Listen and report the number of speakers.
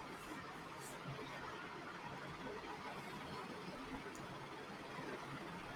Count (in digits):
0